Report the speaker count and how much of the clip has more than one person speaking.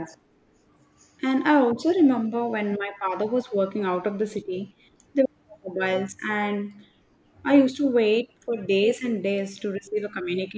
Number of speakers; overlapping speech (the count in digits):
1, no overlap